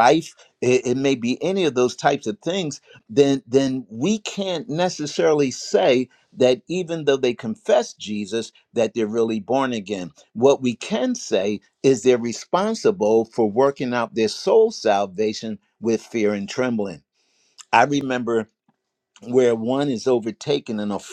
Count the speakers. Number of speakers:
1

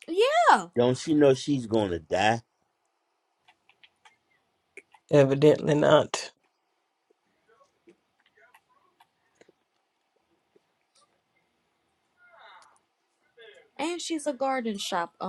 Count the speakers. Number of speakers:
3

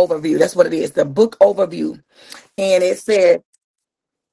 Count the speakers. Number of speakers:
1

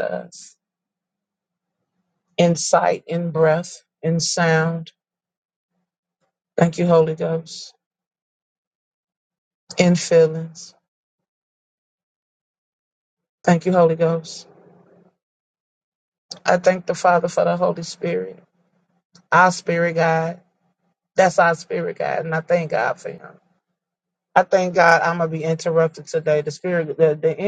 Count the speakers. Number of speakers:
1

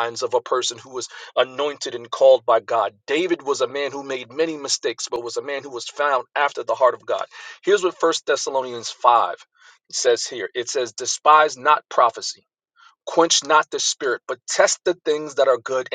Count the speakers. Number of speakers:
1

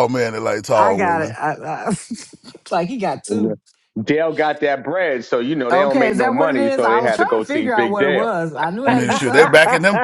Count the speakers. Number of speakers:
3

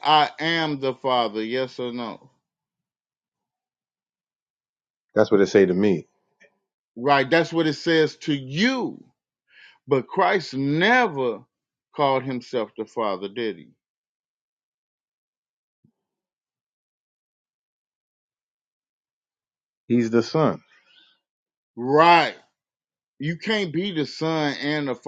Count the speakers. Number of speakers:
2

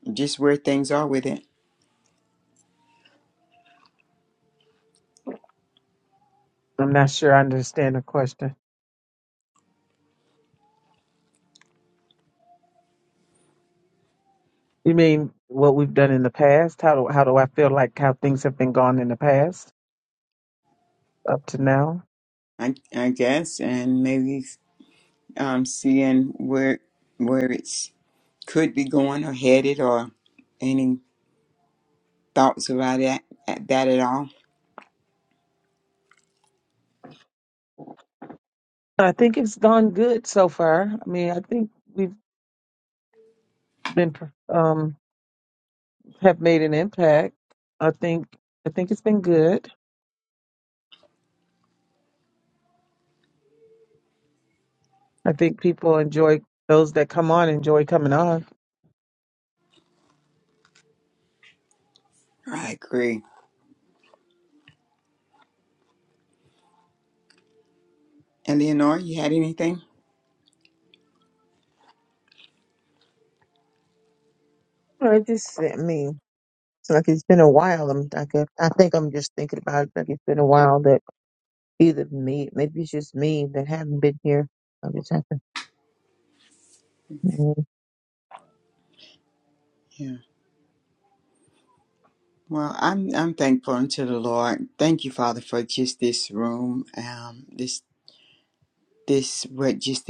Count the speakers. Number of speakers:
3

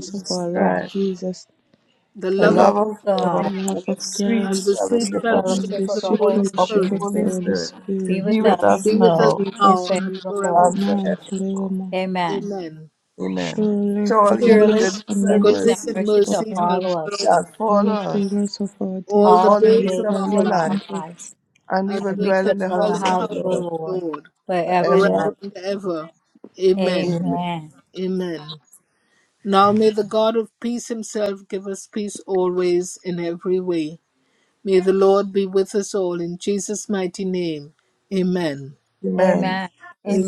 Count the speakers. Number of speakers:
4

